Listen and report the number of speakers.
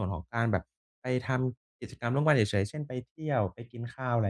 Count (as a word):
one